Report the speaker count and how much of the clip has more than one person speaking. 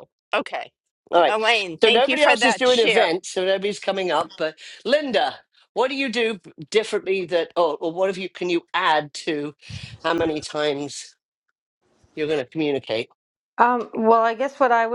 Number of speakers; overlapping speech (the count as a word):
three, about 9%